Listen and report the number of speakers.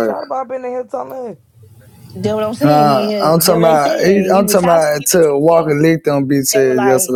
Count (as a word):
three